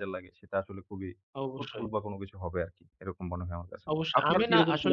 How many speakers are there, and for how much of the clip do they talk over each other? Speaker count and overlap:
two, about 21%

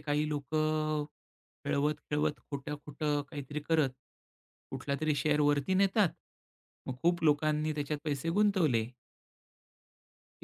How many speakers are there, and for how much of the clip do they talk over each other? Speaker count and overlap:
one, no overlap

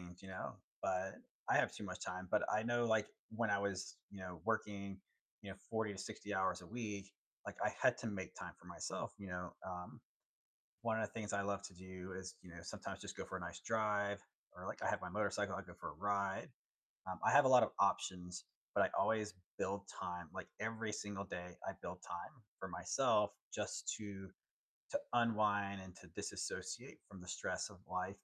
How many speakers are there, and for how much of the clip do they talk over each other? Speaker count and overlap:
one, no overlap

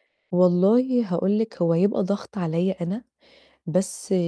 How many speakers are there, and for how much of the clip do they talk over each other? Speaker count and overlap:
one, no overlap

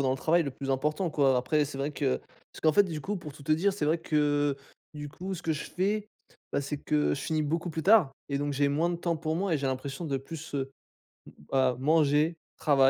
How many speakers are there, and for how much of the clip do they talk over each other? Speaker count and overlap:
one, no overlap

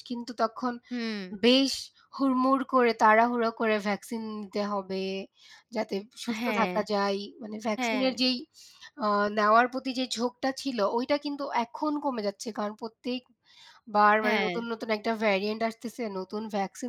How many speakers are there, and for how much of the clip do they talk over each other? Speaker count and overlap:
two, about 7%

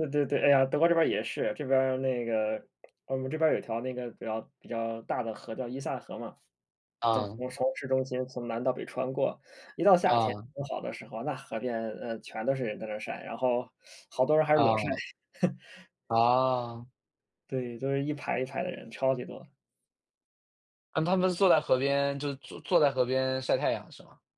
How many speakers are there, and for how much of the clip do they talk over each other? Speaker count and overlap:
two, about 4%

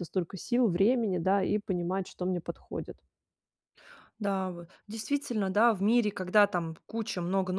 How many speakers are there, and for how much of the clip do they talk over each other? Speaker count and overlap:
two, no overlap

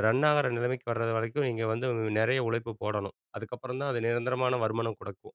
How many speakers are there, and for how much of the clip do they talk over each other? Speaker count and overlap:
one, no overlap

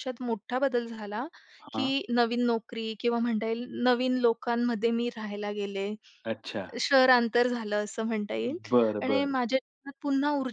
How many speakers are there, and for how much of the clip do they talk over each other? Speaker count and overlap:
two, about 5%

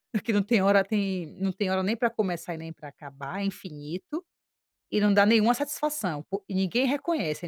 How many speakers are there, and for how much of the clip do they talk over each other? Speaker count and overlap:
one, no overlap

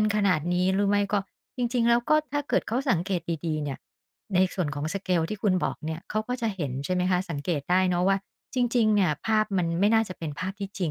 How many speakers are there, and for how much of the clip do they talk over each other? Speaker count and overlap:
one, no overlap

